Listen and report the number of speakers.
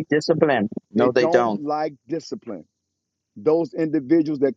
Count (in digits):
2